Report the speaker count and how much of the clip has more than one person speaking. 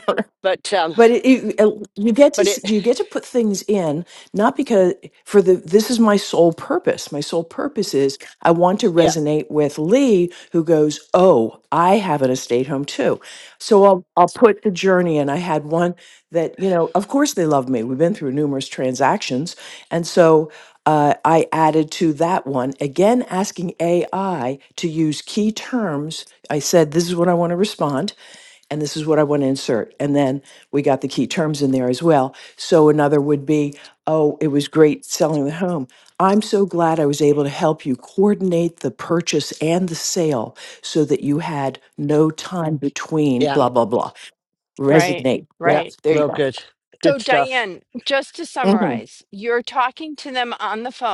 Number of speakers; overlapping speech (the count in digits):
3, about 6%